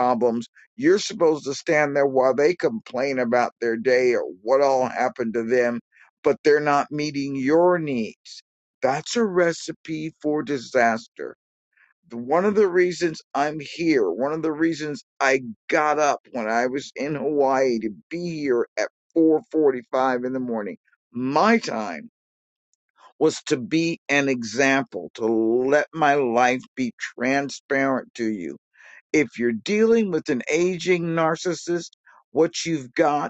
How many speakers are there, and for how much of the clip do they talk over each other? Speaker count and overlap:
one, no overlap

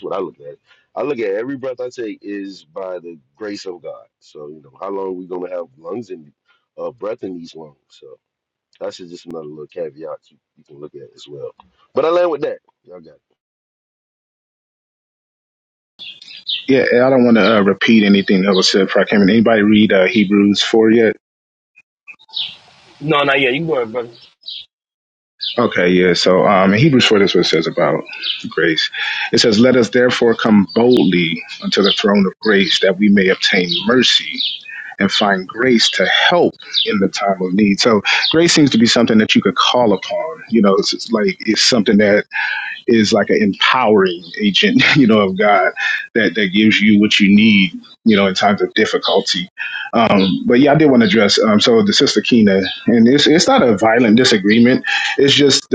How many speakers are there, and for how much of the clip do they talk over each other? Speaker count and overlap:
three, no overlap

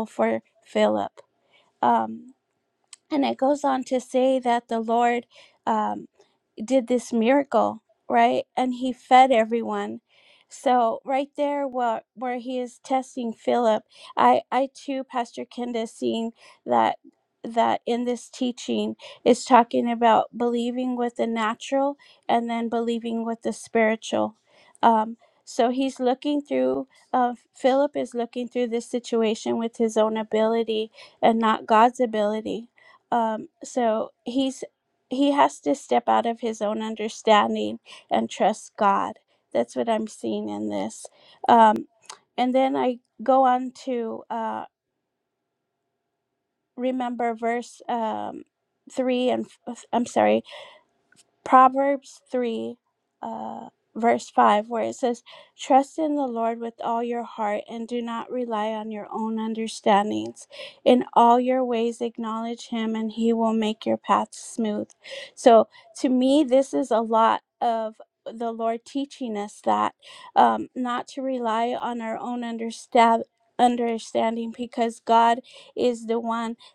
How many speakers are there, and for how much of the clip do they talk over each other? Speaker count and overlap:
one, no overlap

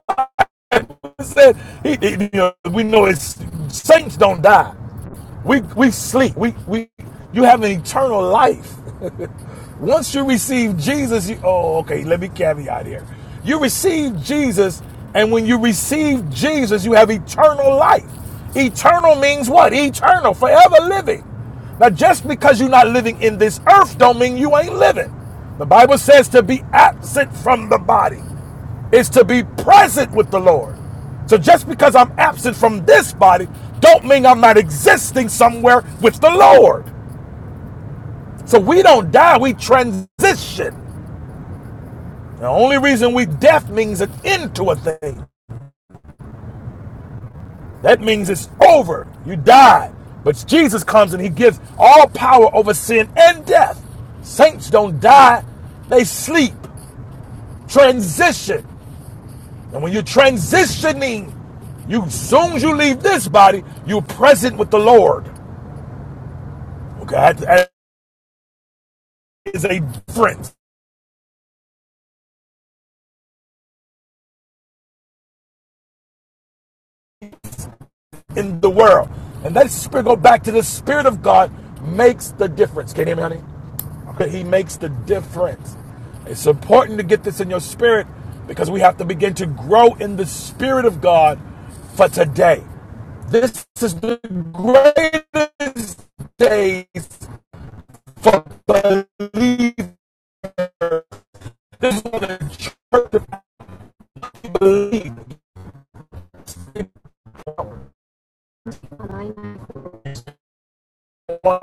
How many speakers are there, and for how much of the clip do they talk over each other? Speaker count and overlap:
one, no overlap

